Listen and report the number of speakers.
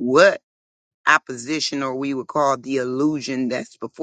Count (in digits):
1